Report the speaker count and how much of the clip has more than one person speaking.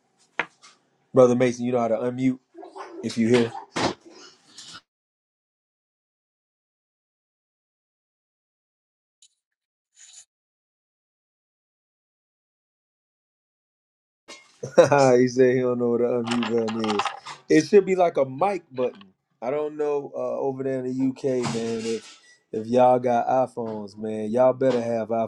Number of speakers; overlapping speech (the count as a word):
one, no overlap